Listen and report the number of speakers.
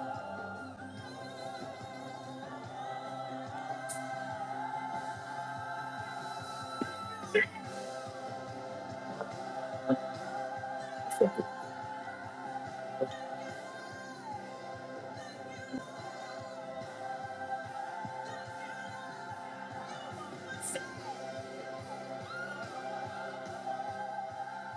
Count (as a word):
zero